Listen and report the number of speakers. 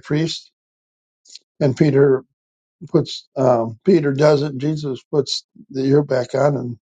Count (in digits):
1